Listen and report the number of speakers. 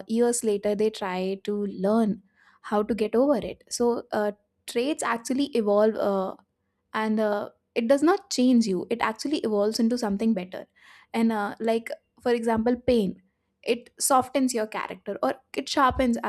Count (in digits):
1